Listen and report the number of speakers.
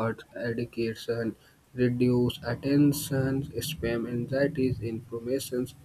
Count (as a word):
one